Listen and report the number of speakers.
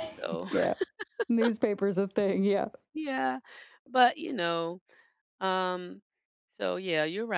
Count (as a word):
two